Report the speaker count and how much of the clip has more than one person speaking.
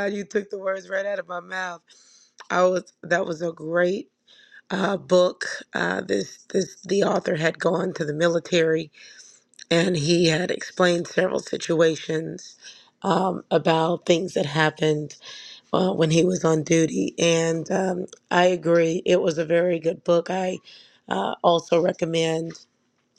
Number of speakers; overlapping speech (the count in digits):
1, no overlap